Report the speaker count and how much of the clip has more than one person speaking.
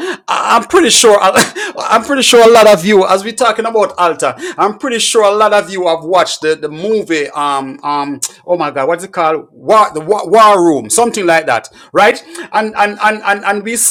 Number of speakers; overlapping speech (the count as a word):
one, no overlap